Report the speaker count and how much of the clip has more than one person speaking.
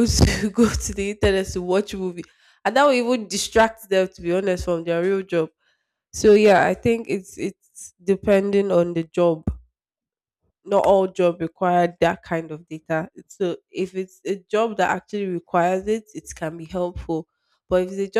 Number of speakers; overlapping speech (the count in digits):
1, no overlap